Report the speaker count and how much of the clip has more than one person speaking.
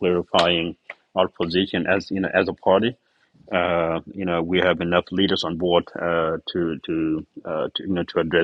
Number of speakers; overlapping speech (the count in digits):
1, no overlap